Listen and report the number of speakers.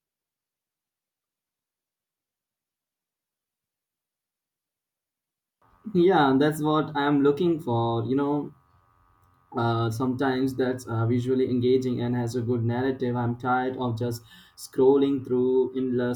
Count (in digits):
1